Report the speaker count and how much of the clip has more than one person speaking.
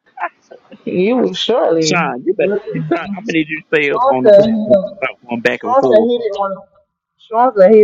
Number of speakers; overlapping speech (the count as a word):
three, about 23%